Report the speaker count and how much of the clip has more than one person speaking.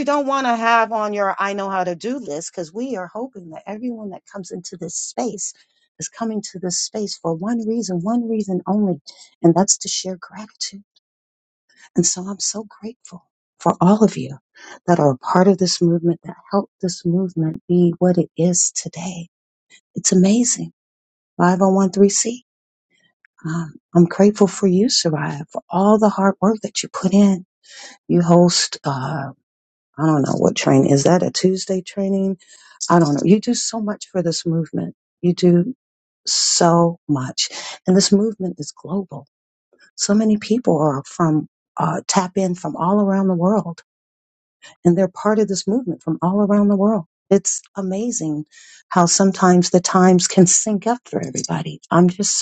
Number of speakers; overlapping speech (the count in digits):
1, no overlap